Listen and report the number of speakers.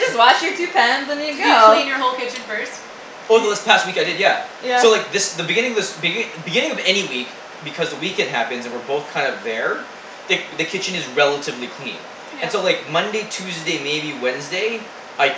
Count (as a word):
three